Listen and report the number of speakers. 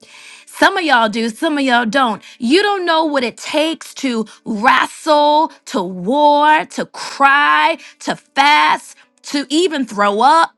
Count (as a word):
one